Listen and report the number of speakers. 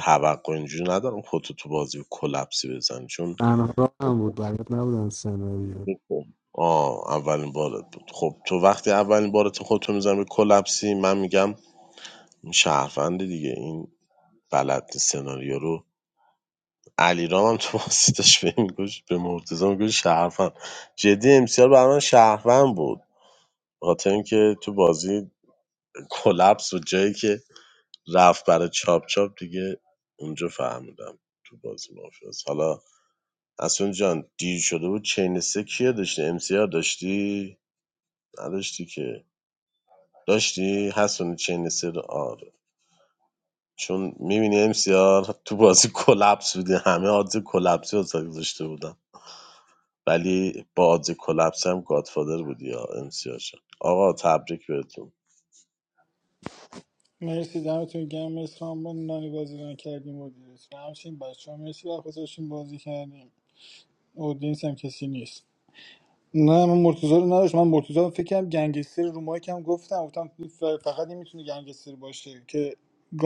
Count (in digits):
3